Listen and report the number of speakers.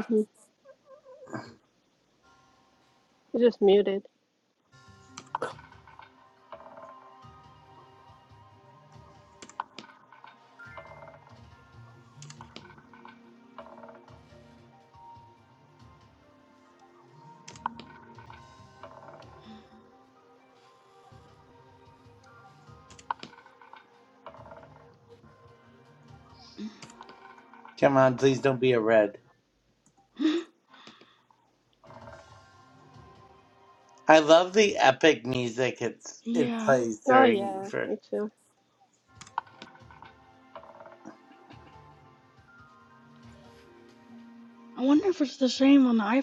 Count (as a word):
three